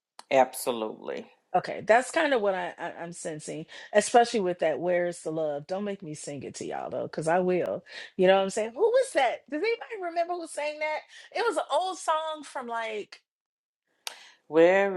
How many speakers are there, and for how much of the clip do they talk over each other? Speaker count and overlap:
two, no overlap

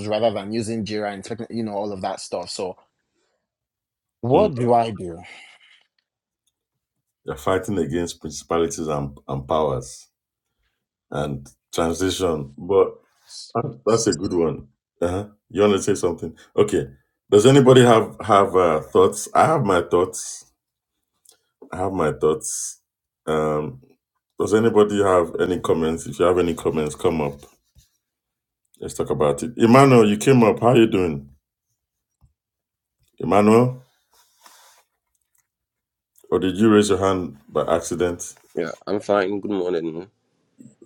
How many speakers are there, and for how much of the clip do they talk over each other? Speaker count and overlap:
three, under 1%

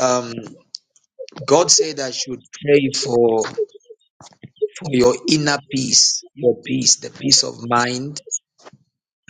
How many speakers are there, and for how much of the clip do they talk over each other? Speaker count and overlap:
one, no overlap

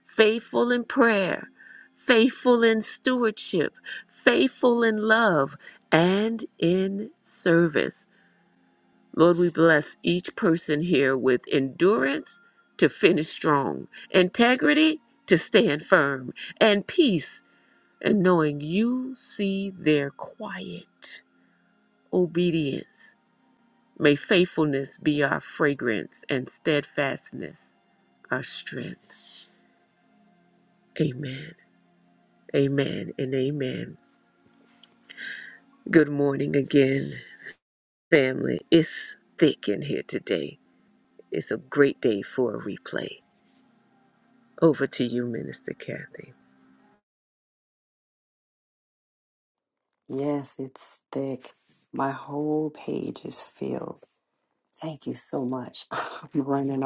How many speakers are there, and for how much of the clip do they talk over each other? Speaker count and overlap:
two, no overlap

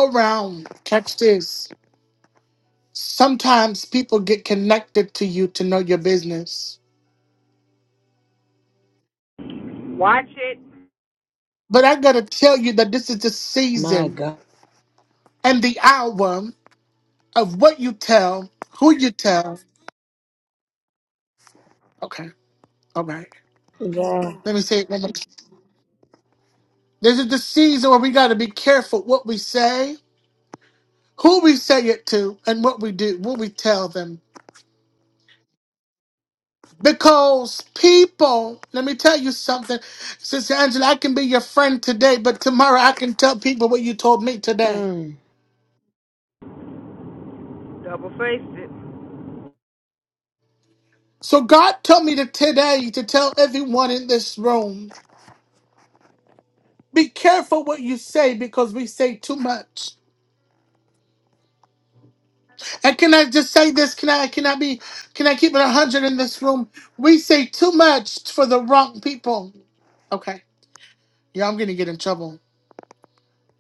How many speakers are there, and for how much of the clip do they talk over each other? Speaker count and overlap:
three, about 1%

